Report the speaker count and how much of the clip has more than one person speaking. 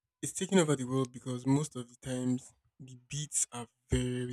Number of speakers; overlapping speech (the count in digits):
1, no overlap